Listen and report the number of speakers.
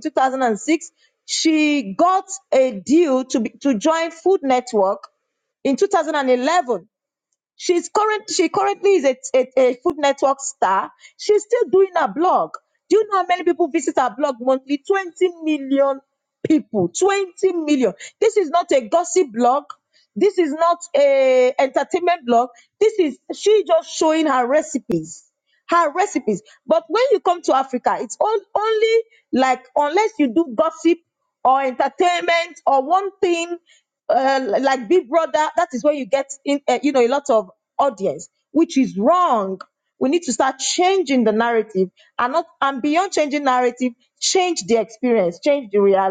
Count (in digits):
1